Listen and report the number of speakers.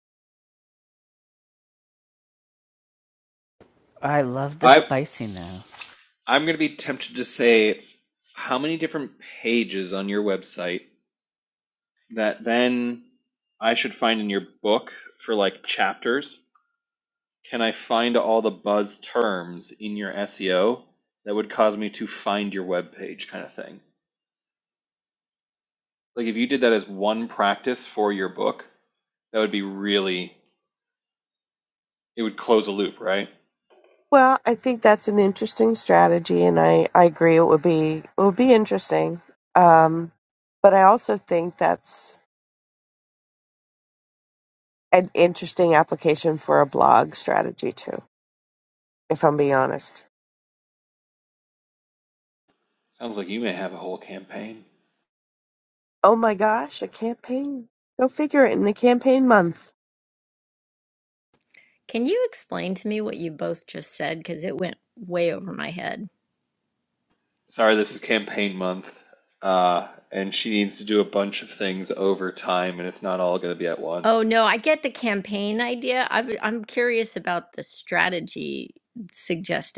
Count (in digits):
4